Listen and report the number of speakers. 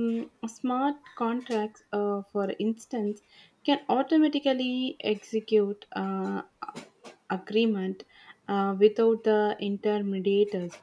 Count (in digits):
1